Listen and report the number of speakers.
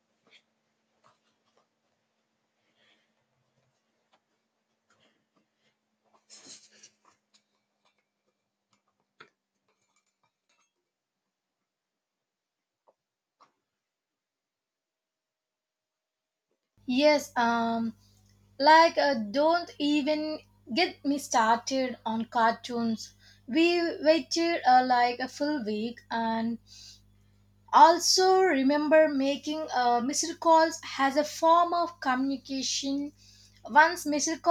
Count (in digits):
1